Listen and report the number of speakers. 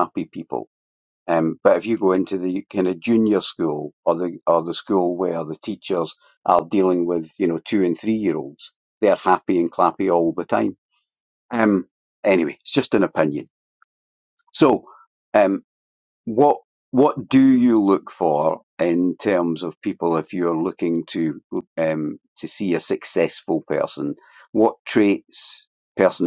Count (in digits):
1